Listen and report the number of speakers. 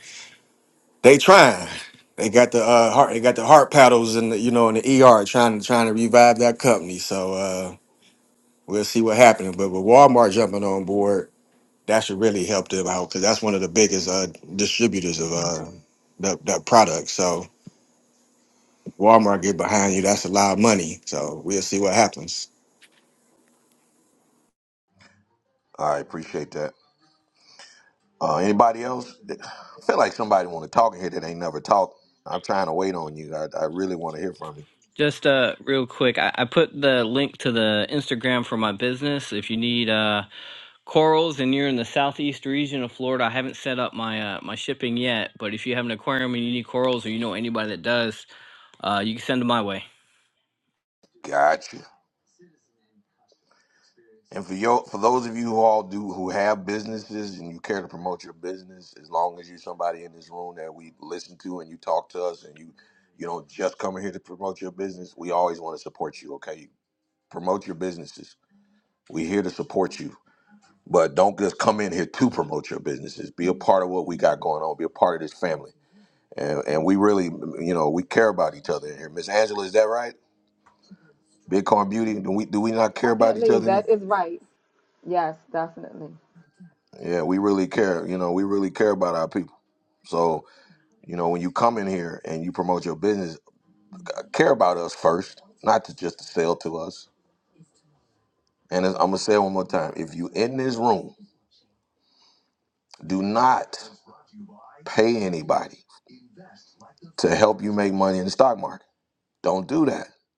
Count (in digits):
4